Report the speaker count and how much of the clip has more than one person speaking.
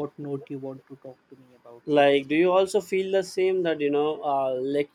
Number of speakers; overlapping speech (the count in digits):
2, about 6%